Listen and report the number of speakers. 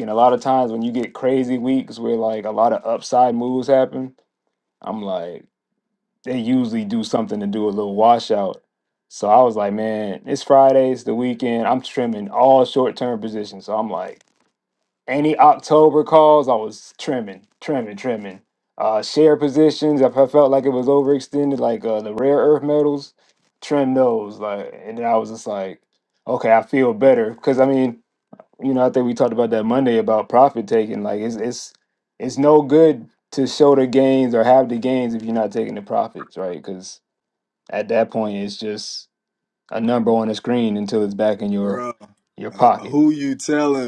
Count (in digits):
2